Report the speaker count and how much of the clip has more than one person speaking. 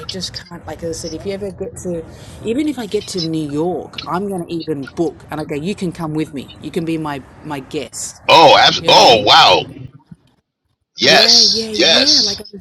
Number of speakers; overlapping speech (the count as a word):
two, about 14%